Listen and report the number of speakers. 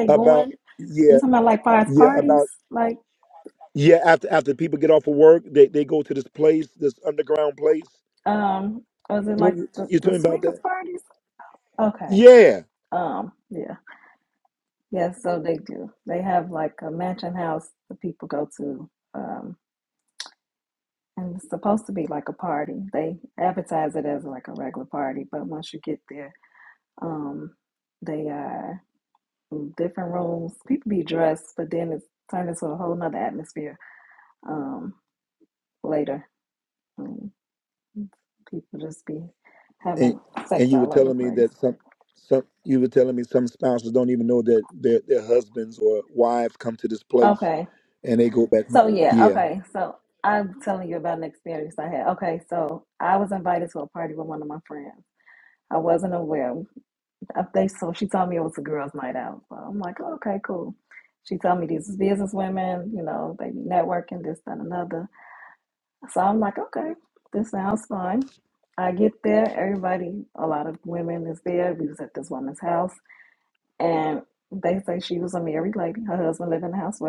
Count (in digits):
2